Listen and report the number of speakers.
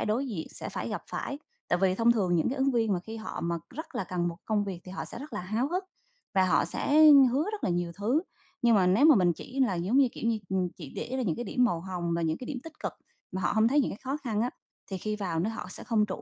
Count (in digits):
1